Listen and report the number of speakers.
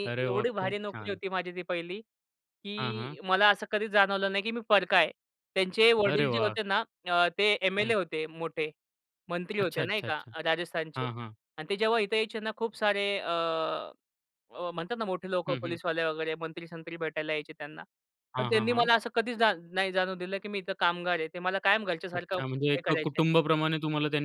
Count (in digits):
2